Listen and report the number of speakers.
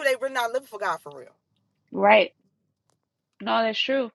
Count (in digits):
2